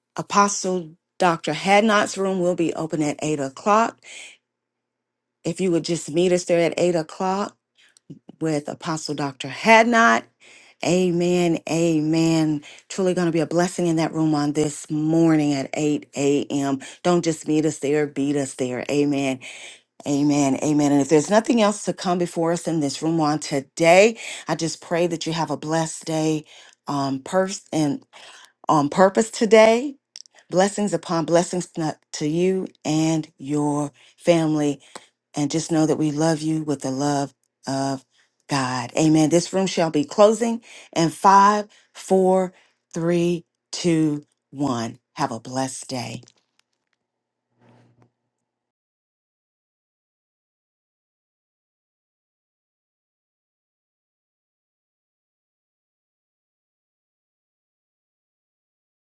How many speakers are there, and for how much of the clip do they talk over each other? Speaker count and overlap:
1, no overlap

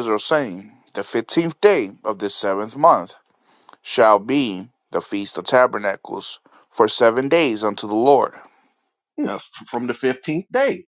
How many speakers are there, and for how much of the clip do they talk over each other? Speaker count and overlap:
2, no overlap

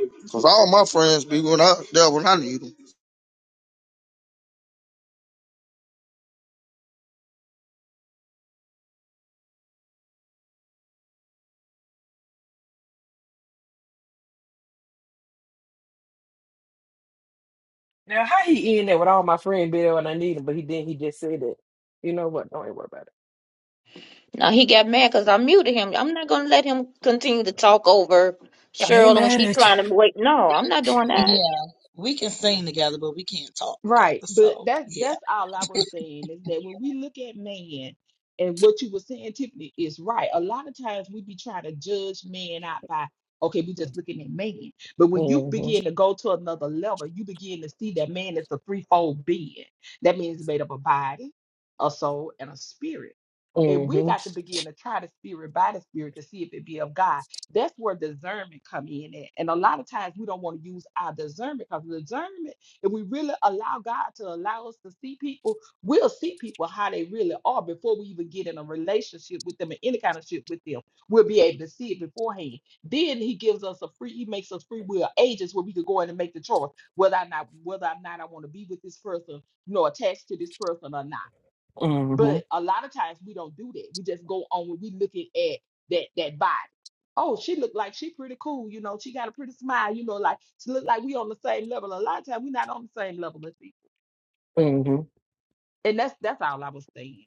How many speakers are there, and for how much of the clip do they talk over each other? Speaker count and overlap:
5, about 4%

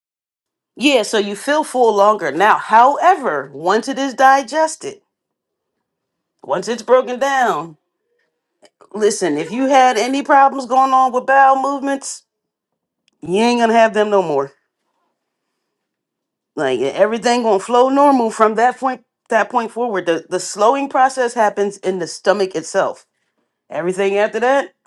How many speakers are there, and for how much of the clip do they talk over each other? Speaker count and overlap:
1, no overlap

